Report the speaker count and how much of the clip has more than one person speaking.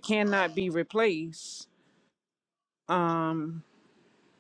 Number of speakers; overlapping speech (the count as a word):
one, no overlap